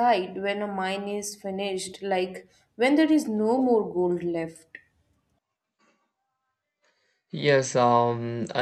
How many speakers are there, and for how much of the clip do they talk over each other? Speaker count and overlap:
2, no overlap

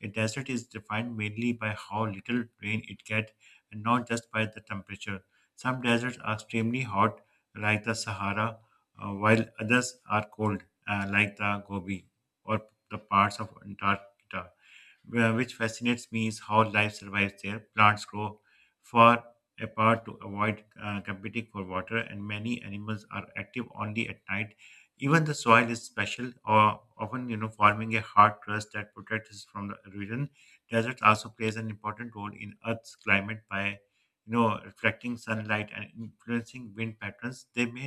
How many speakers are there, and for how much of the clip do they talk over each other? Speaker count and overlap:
1, no overlap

